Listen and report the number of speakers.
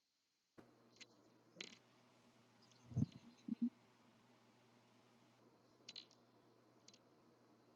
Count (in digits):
0